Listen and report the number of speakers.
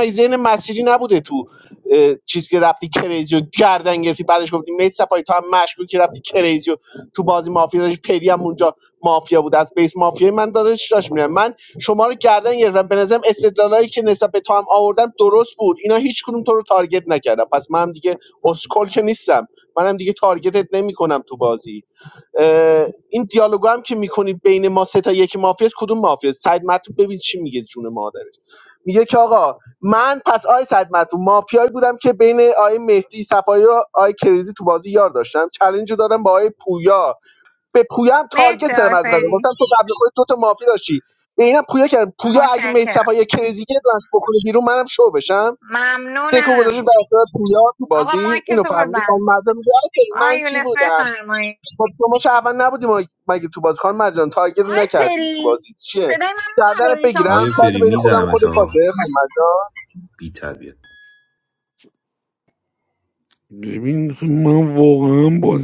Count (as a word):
four